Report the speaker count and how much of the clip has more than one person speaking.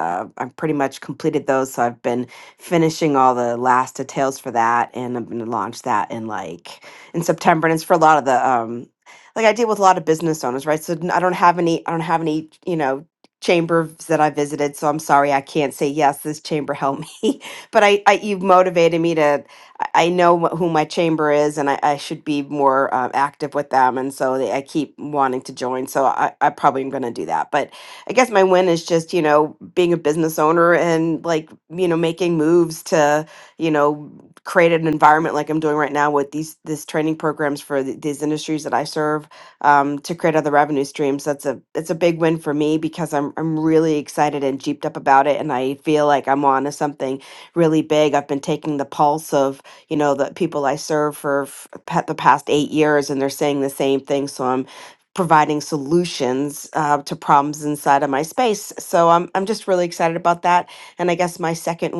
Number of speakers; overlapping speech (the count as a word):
one, no overlap